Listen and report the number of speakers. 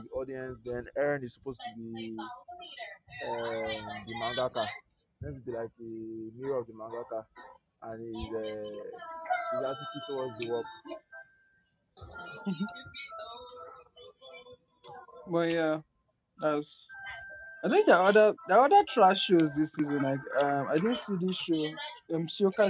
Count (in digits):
2